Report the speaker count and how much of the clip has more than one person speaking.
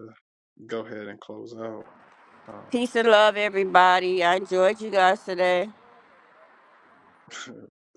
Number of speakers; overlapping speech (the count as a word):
two, no overlap